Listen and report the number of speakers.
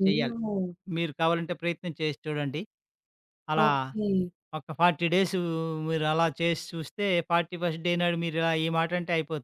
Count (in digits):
2